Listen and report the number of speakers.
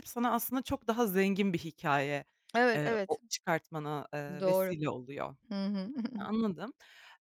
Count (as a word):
two